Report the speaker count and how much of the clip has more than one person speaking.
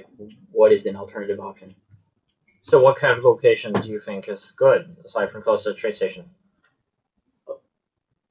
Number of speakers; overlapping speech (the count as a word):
two, no overlap